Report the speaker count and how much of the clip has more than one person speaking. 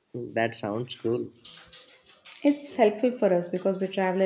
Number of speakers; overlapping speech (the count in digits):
2, no overlap